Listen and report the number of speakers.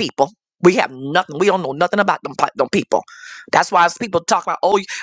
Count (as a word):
one